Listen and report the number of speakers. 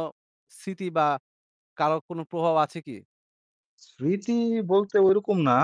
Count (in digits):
2